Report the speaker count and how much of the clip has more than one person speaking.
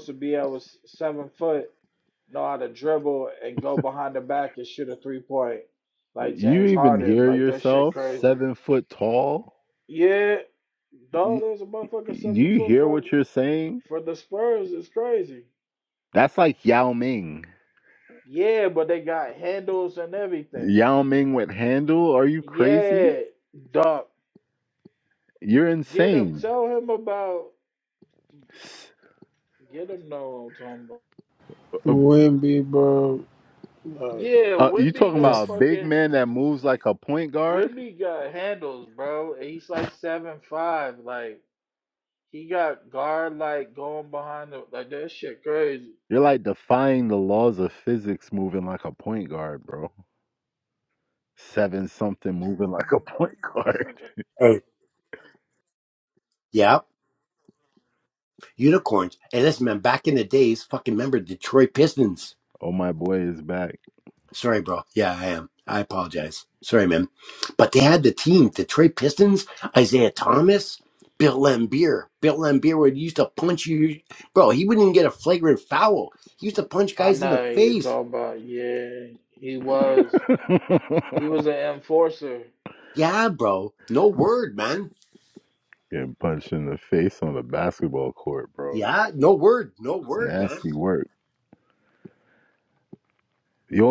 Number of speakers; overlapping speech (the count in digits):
4, about 9%